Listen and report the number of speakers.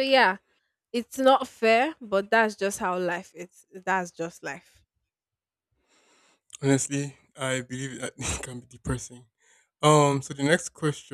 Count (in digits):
2